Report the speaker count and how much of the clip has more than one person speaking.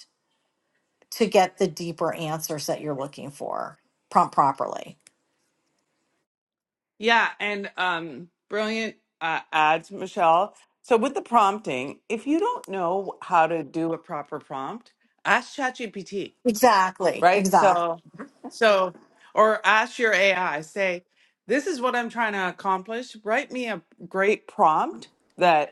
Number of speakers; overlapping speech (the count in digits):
2, about 2%